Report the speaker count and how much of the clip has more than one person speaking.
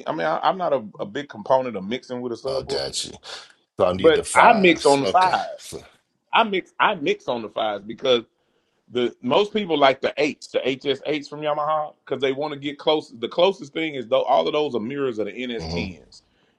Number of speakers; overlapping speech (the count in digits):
2, about 13%